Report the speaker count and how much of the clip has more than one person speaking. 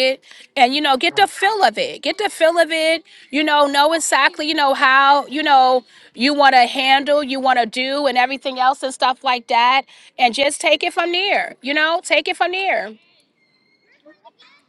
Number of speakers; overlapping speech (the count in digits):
1, no overlap